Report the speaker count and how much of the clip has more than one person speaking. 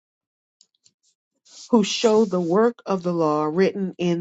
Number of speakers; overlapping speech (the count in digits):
1, no overlap